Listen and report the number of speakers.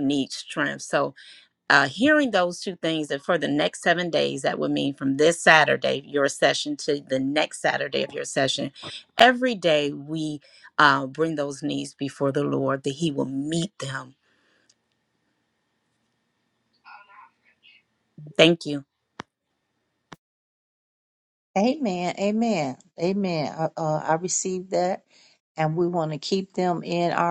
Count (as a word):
two